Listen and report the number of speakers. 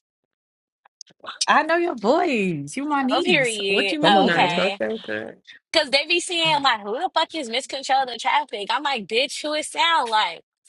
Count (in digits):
3